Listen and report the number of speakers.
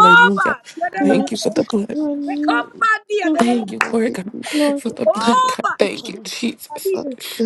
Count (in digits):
3